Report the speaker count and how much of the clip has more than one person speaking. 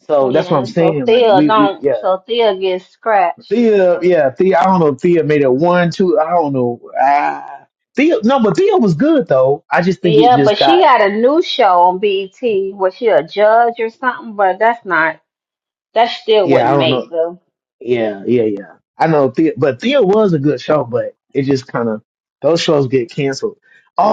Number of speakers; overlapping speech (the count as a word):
two, about 13%